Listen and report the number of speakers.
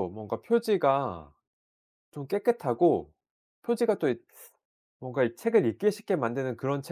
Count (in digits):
1